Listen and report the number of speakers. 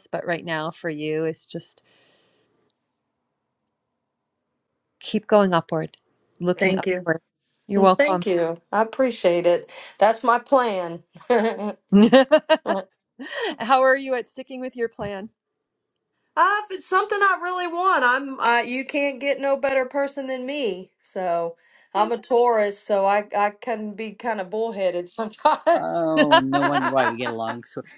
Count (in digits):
3